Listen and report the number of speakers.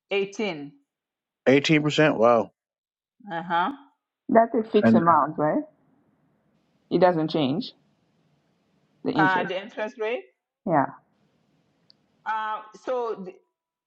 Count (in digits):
3